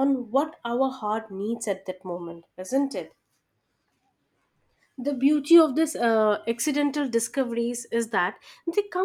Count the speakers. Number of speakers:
one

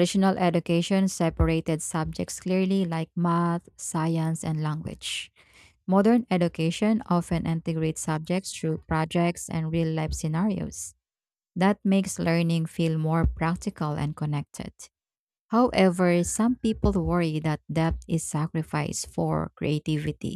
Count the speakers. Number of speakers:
one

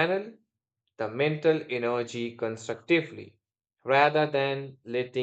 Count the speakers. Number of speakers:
one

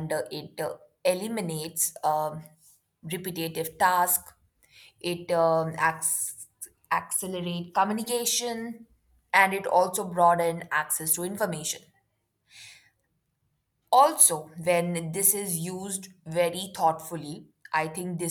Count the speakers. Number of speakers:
one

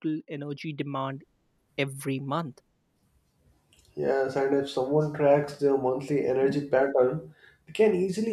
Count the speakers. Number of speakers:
two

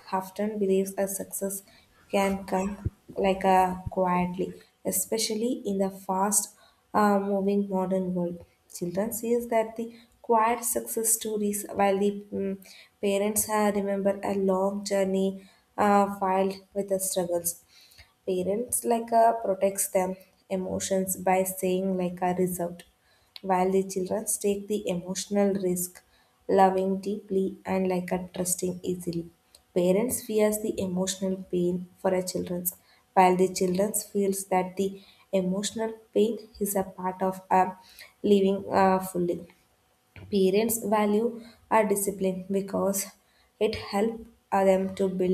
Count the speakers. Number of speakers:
one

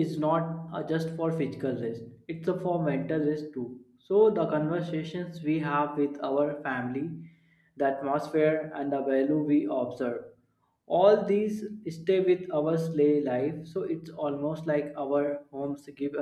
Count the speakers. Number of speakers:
one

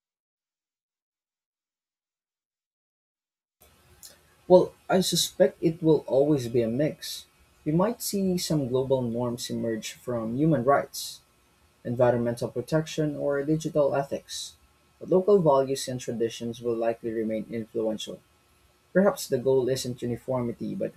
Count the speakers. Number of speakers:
one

